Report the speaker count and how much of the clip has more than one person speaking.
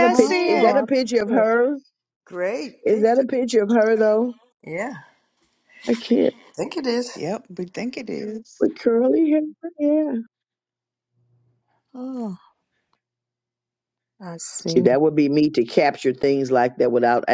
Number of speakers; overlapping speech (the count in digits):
4, about 10%